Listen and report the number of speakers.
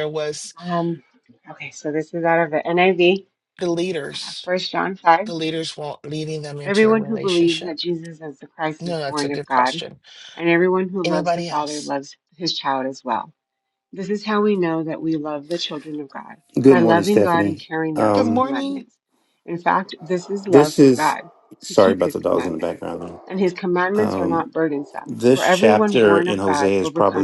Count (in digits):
3